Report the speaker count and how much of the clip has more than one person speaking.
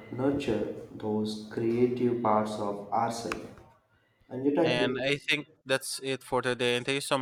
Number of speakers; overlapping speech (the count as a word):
two, about 7%